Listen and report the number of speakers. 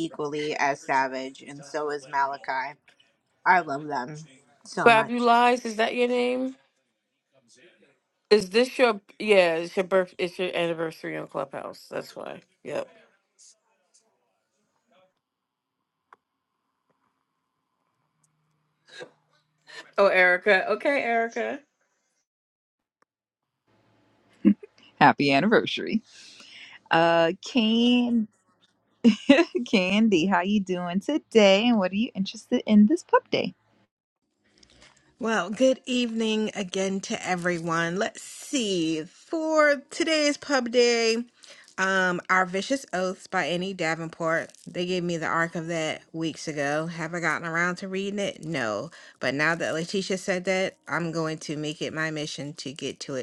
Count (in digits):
4